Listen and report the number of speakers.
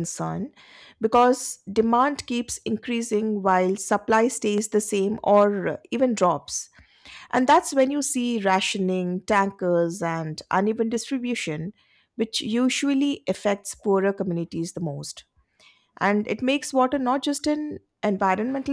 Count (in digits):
1